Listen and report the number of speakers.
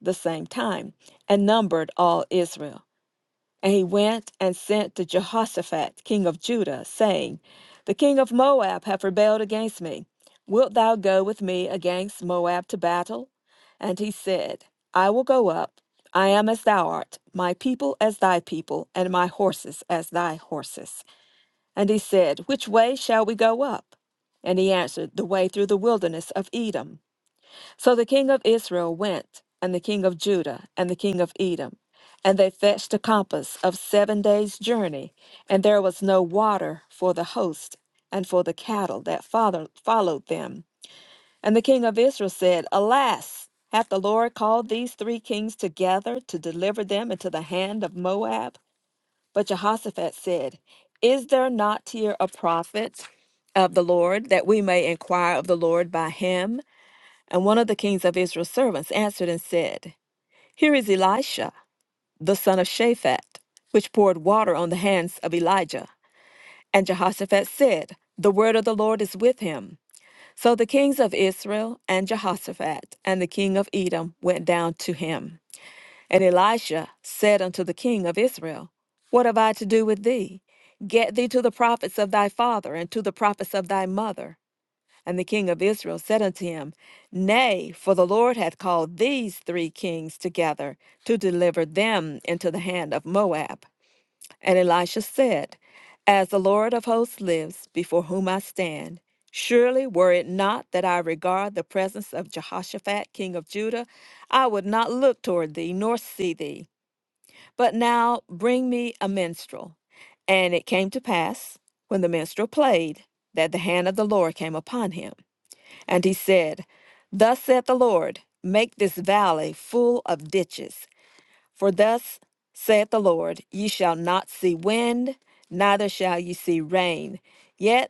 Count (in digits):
1